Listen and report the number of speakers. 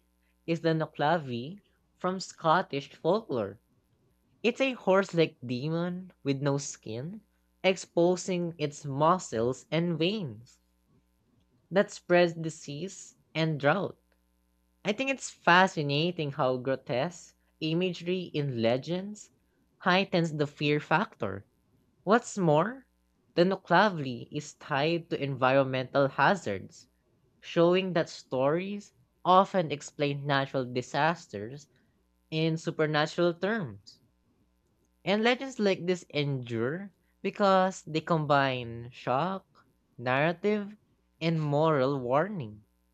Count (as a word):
one